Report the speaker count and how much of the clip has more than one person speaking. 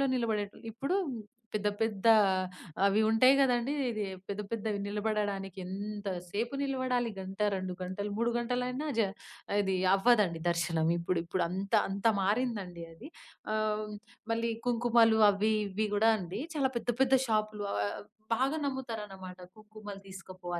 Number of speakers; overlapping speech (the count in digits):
1, no overlap